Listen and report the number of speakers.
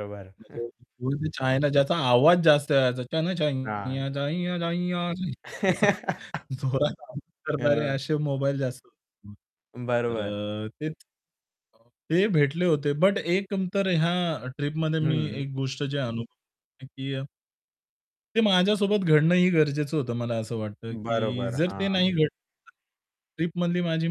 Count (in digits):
2